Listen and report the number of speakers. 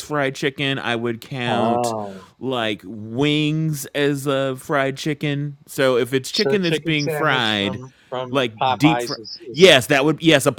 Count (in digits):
2